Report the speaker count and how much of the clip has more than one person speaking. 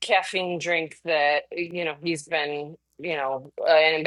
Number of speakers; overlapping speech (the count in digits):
1, no overlap